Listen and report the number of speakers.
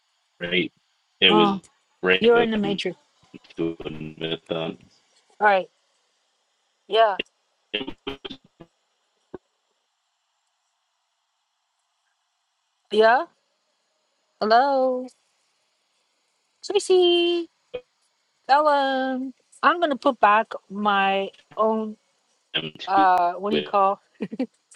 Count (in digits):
2